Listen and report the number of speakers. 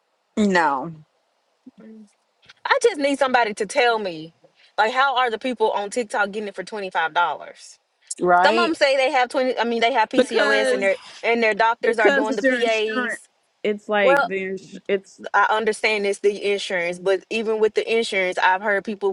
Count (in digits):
3